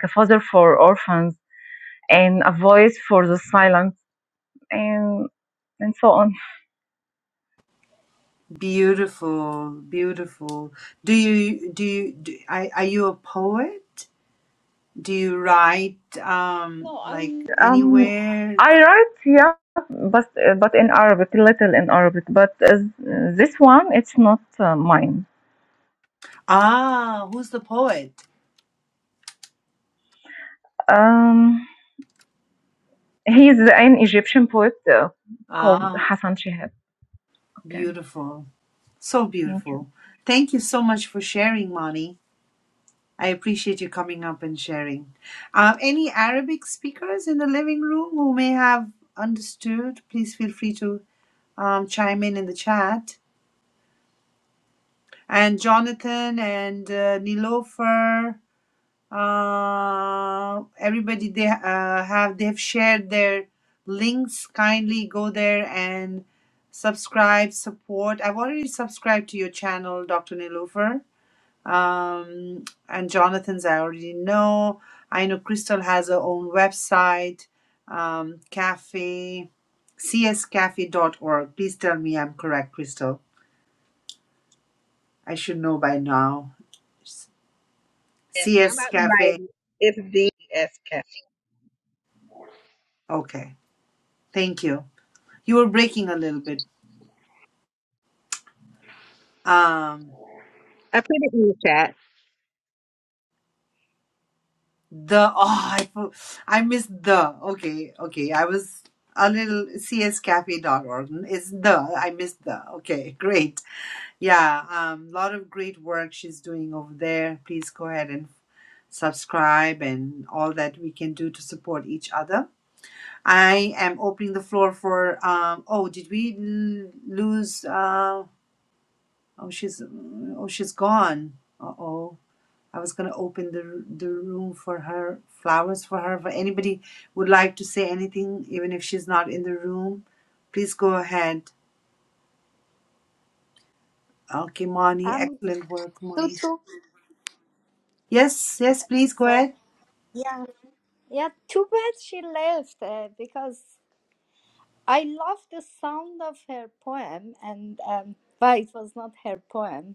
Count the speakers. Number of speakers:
4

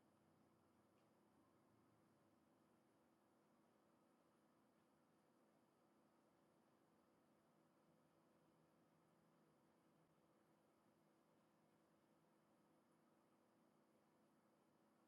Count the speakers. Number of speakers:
0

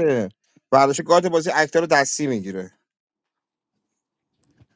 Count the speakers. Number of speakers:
1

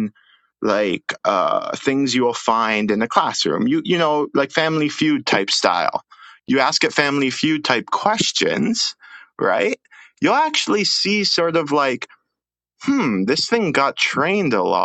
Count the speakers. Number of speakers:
1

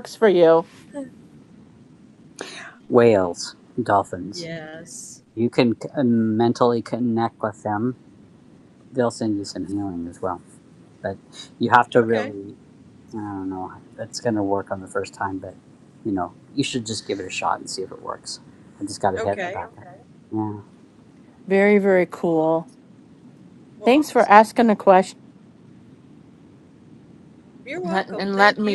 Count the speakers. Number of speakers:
3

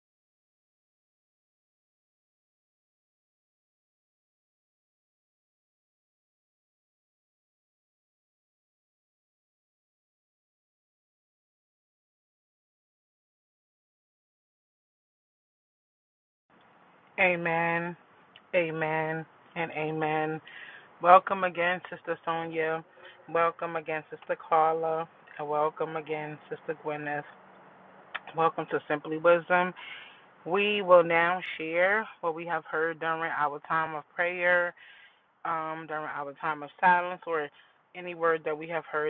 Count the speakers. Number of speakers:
1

